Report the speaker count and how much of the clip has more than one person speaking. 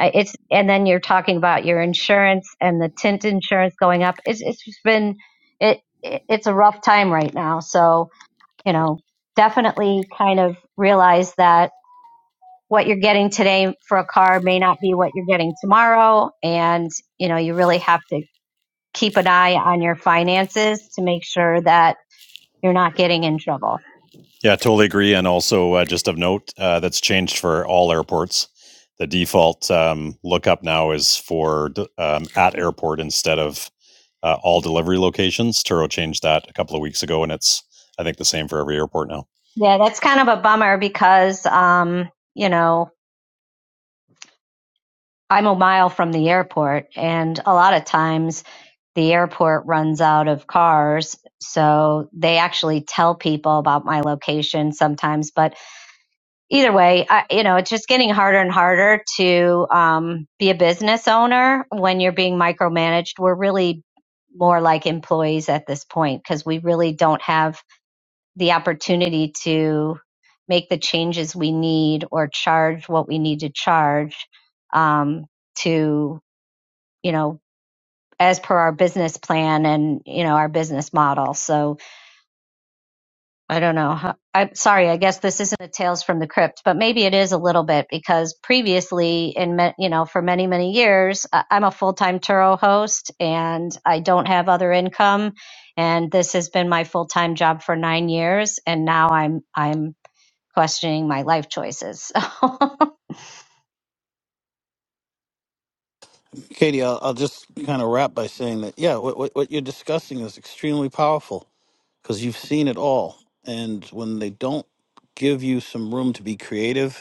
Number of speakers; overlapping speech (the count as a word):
three, no overlap